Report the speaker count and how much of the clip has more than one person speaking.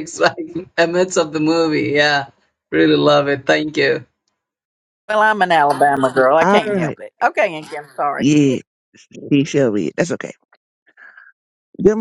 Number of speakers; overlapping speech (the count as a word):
three, about 5%